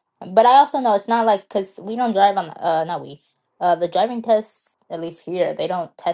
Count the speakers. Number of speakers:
1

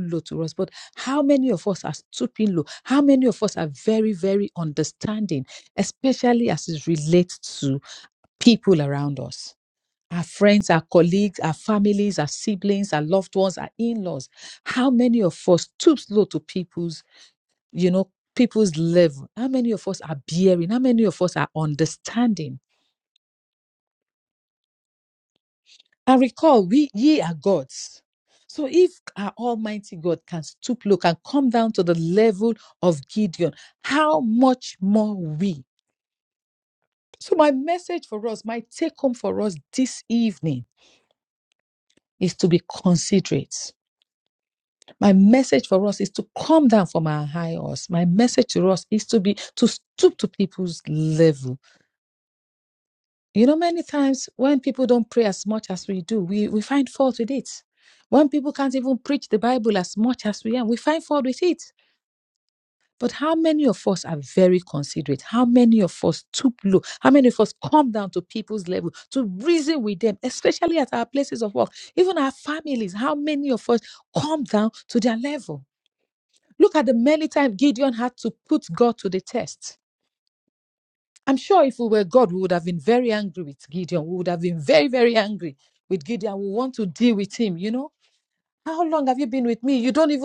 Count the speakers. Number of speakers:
1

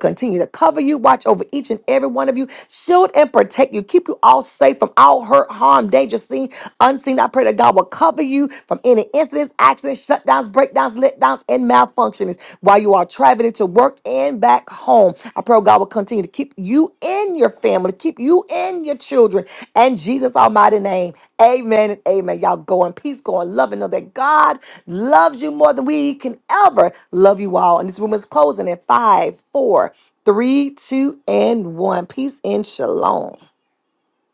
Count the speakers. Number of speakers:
1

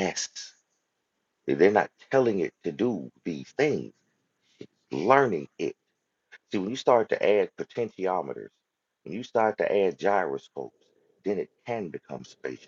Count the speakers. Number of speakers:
1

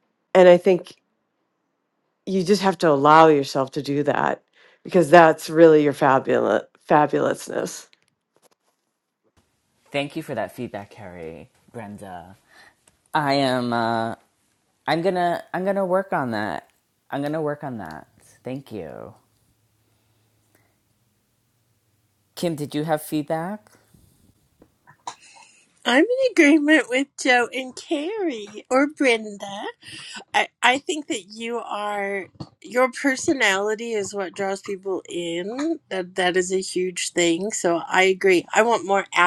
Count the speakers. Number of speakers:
3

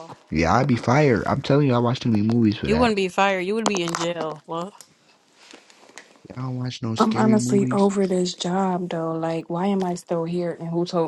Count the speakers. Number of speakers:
3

